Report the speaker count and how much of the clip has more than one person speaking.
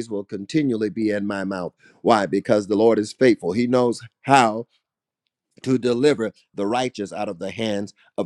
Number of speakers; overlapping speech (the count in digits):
1, no overlap